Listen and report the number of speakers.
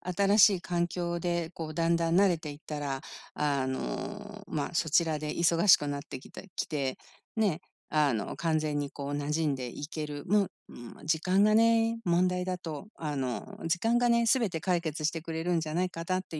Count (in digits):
1